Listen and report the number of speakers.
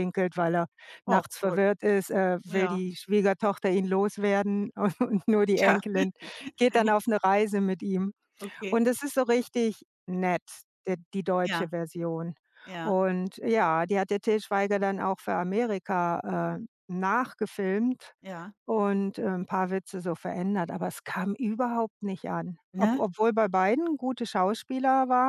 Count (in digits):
2